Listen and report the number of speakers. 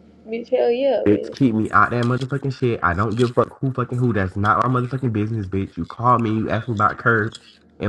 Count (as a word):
two